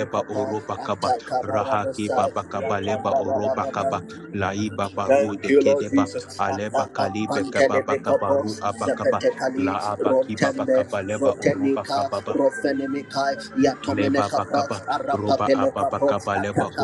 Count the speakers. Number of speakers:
two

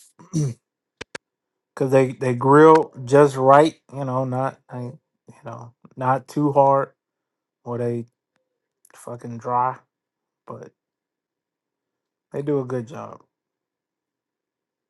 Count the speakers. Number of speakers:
one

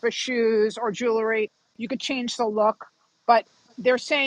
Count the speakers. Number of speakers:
one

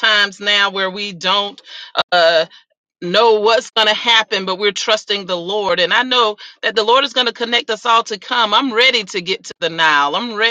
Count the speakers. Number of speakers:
one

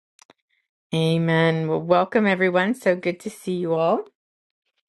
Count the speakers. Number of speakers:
one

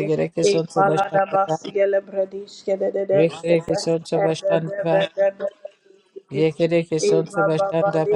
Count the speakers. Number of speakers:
two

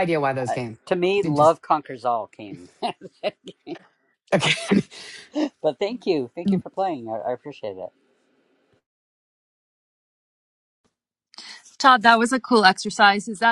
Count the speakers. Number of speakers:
three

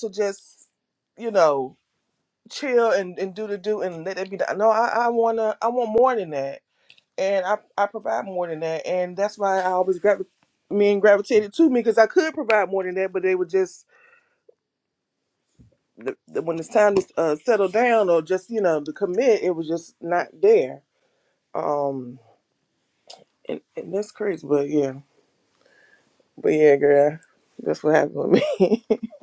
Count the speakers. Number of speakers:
one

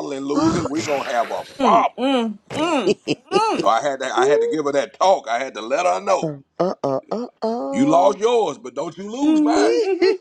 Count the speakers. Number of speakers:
three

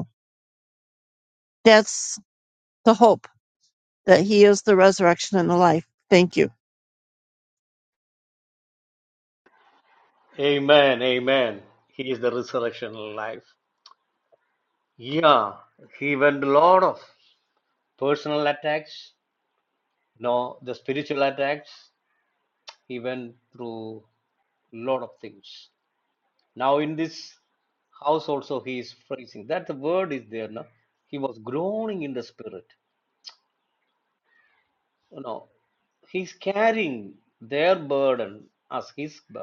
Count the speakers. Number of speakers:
two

